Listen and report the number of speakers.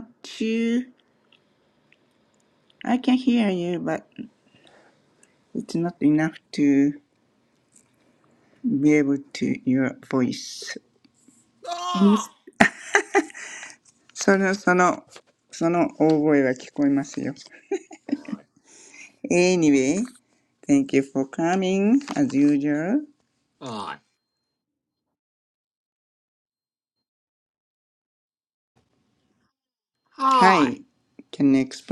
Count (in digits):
2